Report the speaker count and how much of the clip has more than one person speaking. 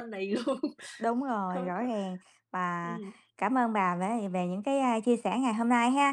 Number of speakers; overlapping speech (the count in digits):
2, about 9%